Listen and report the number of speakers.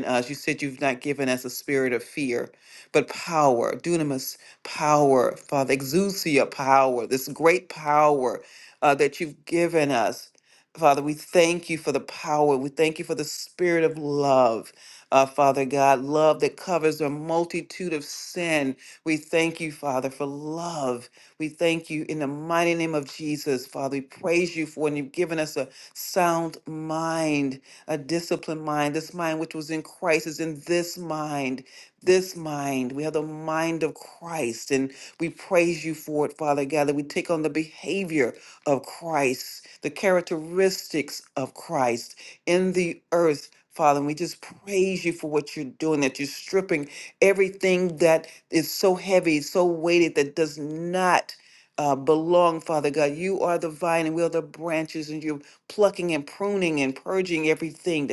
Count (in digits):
1